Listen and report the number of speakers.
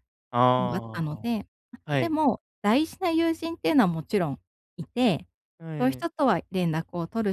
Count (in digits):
2